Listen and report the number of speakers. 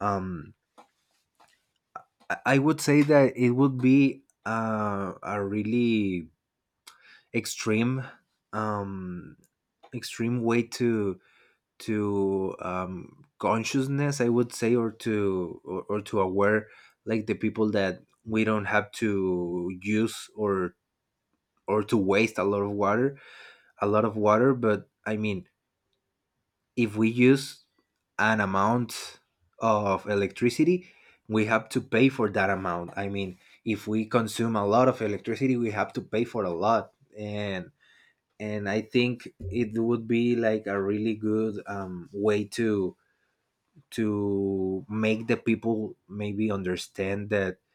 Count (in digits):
1